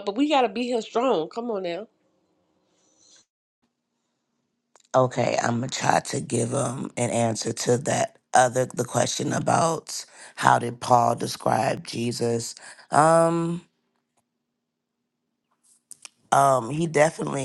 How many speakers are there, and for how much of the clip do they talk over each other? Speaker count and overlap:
2, no overlap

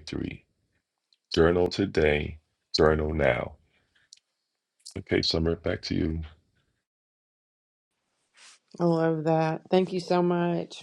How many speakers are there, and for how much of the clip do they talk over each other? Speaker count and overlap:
2, no overlap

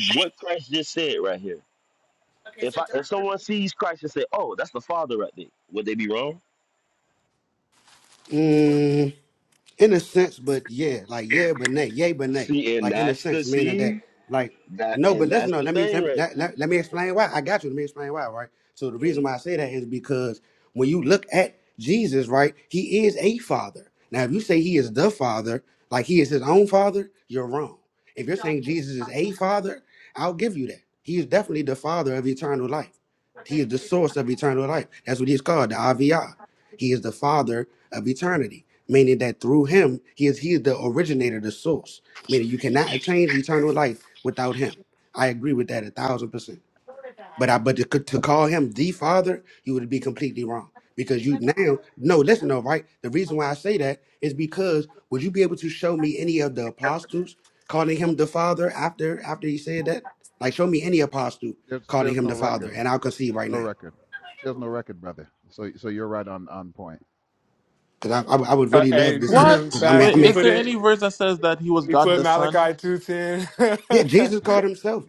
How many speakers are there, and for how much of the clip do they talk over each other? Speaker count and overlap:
5, about 9%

